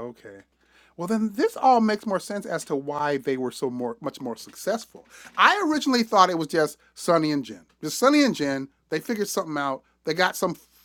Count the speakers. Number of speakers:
1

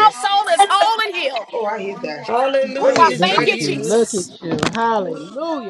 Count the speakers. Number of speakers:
4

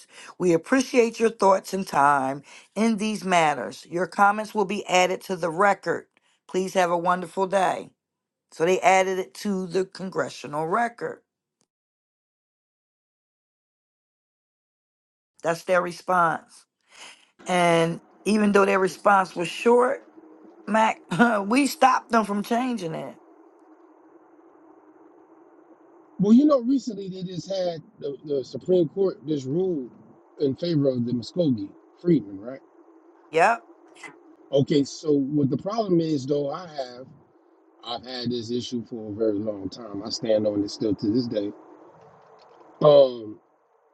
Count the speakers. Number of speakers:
2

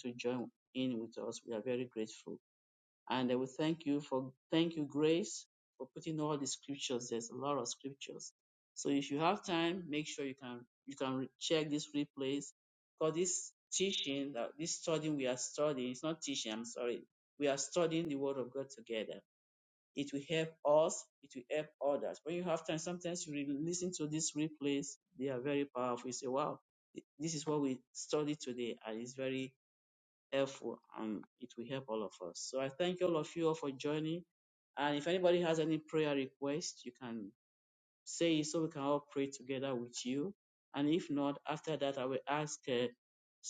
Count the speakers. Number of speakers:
1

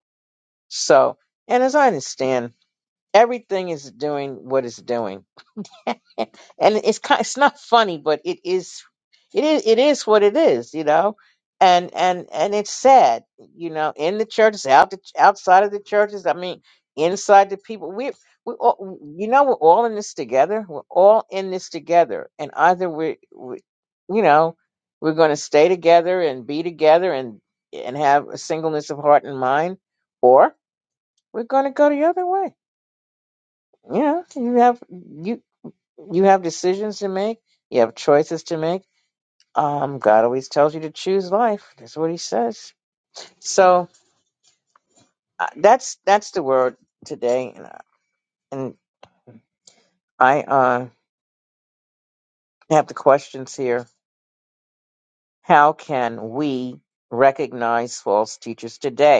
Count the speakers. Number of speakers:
1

